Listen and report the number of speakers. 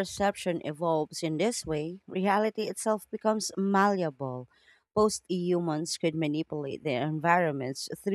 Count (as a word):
one